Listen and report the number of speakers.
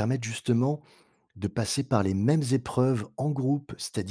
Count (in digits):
1